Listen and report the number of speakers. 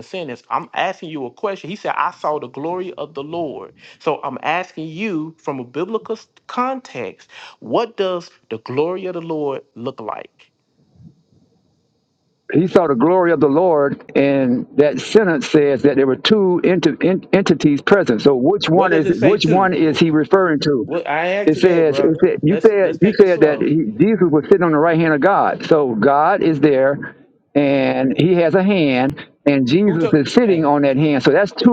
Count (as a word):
two